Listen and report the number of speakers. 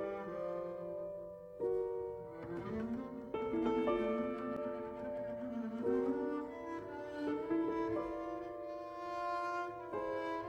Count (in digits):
0